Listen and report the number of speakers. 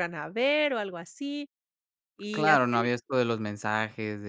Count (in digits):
2